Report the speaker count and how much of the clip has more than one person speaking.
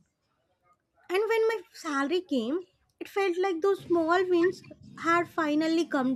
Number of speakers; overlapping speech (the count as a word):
one, no overlap